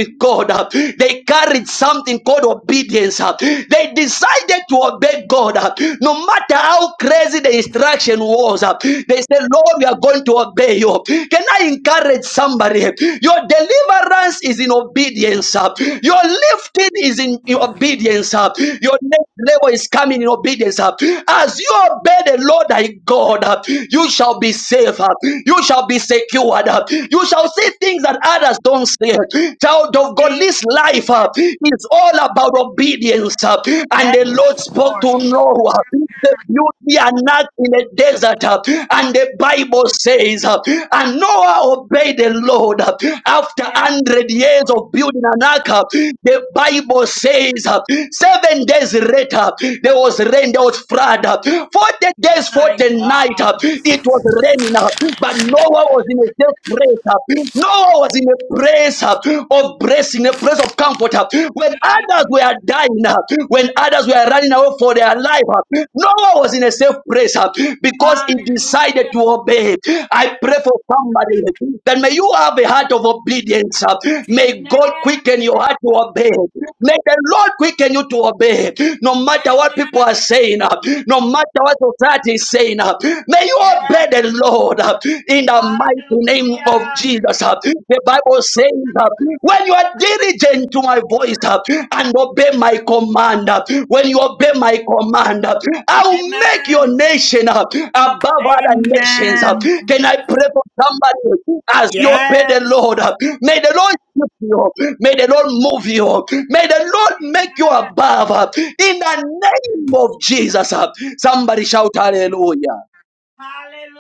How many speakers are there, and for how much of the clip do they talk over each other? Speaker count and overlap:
2, about 9%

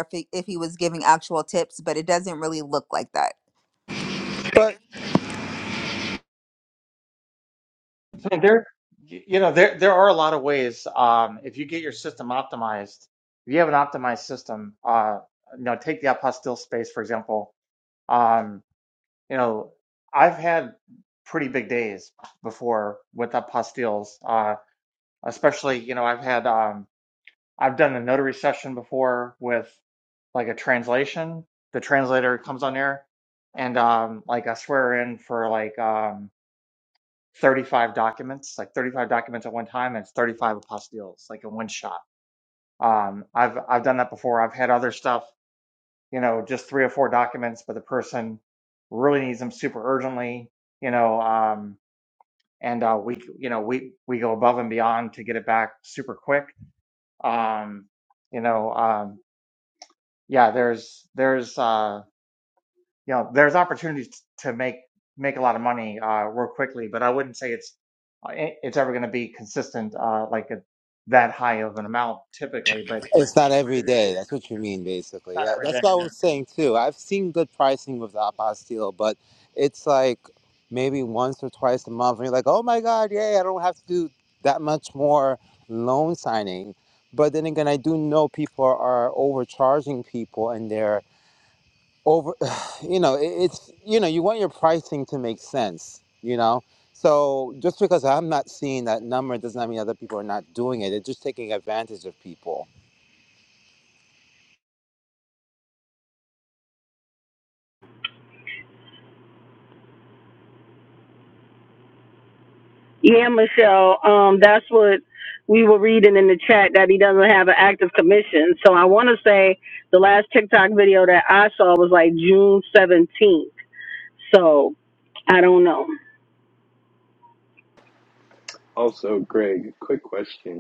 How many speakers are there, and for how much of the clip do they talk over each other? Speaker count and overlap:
5, about 1%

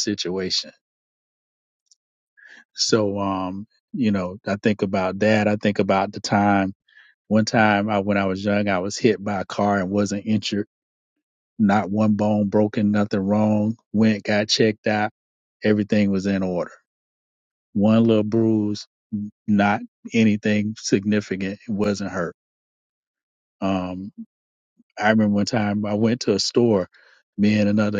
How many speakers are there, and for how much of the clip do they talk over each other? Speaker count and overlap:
1, no overlap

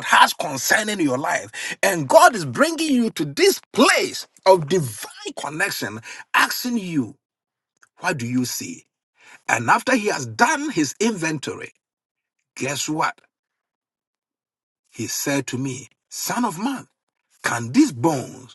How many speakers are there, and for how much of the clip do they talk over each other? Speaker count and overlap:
1, no overlap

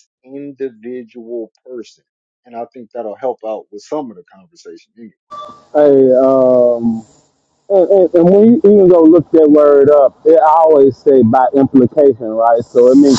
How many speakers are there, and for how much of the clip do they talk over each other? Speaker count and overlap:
2, no overlap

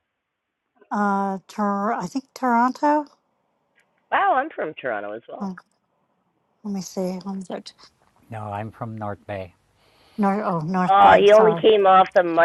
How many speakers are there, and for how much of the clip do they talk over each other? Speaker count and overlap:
3, about 7%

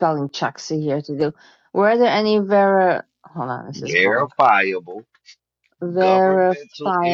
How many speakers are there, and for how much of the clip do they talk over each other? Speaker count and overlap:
2, about 21%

